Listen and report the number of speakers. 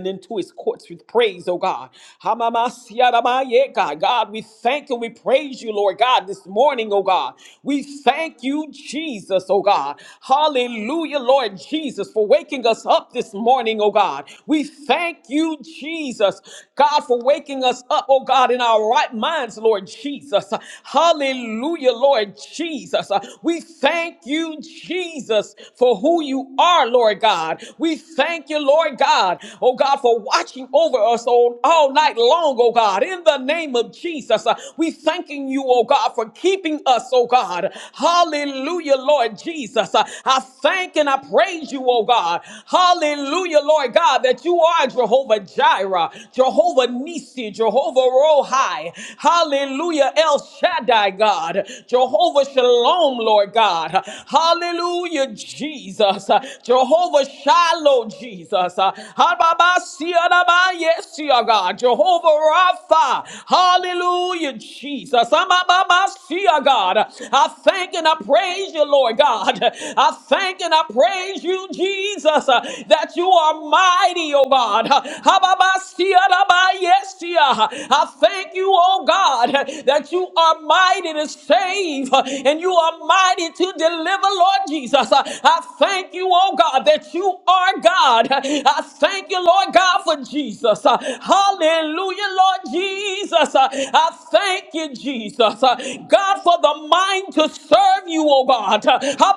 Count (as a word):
one